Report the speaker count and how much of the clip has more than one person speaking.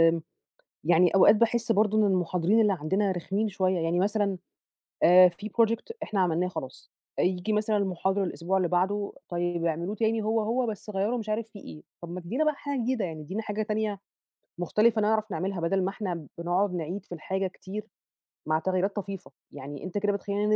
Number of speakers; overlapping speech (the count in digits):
1, no overlap